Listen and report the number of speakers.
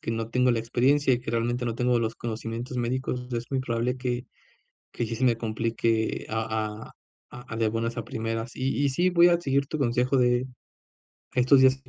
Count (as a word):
one